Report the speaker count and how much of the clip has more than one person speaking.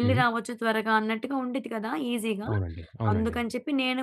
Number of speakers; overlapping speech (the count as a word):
two, about 15%